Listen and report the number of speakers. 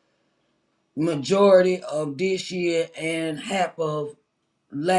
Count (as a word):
one